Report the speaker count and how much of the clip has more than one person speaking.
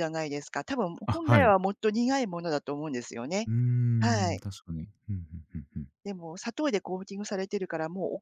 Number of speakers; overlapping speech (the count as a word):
two, about 10%